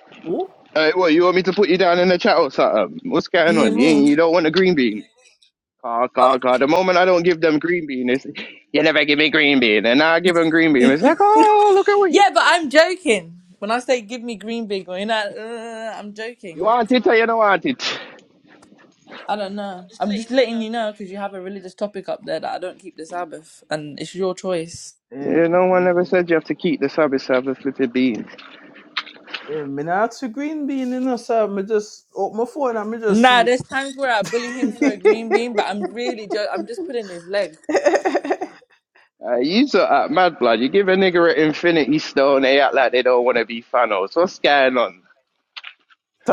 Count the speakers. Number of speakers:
3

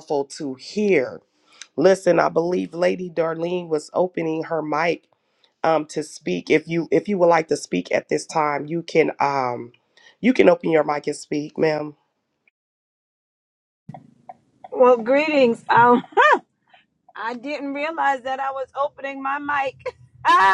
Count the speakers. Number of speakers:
2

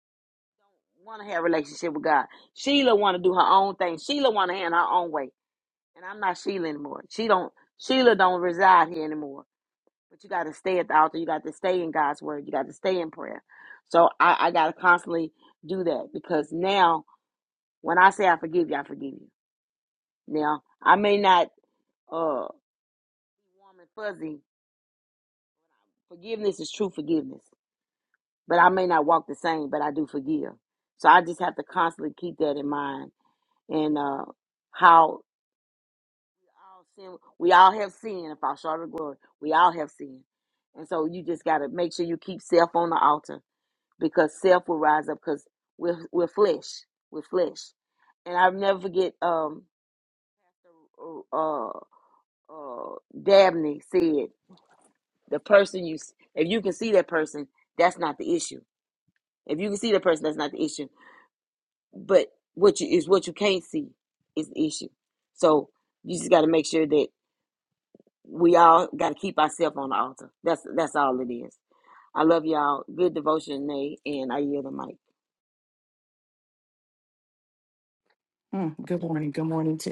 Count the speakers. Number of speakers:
2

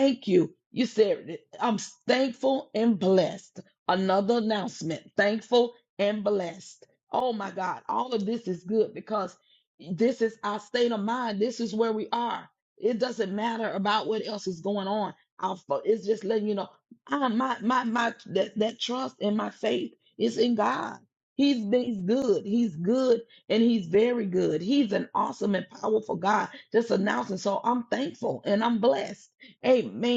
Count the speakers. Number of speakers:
1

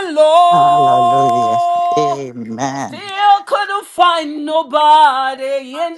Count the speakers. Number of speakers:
2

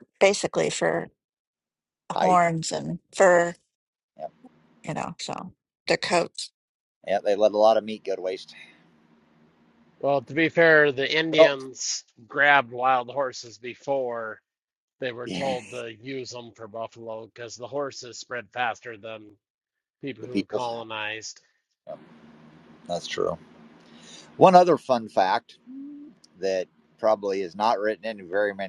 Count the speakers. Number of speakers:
3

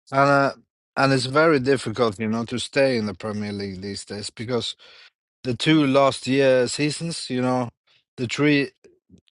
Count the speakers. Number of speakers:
1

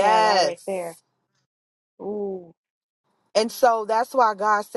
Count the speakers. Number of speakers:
2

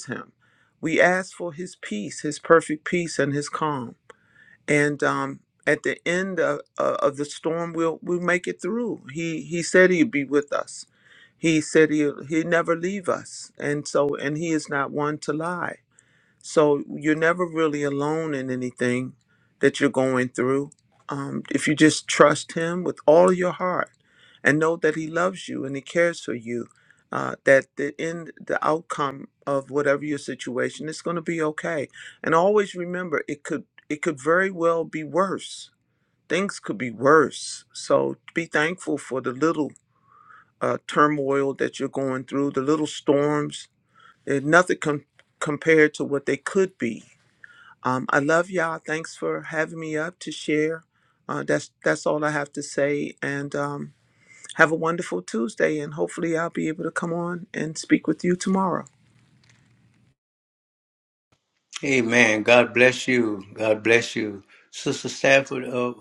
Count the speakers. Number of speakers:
2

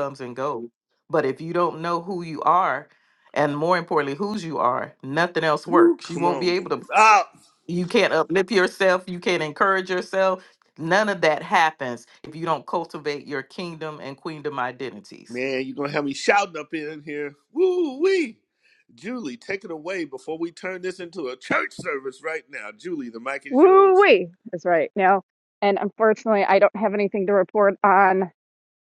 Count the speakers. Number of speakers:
3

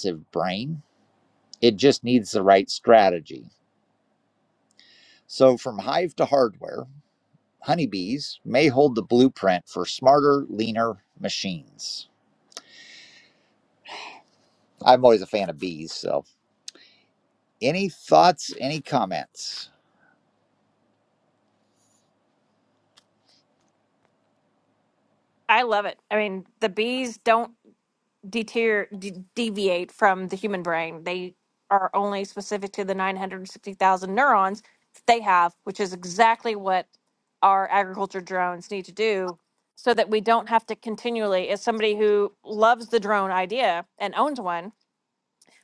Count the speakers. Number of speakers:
2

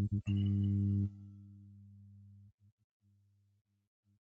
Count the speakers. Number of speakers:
0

